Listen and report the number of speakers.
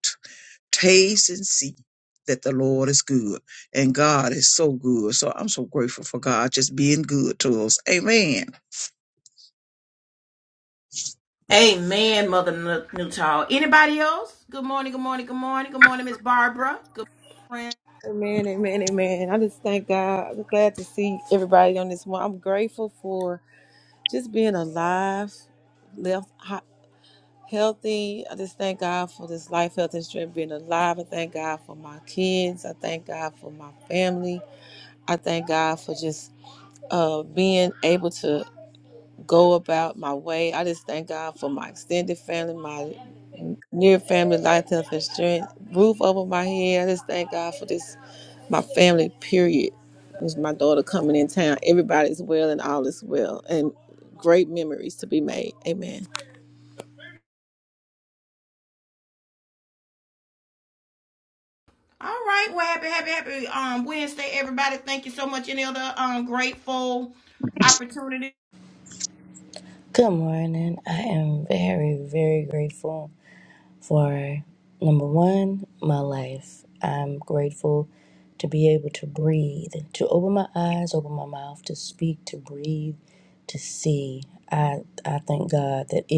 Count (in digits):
4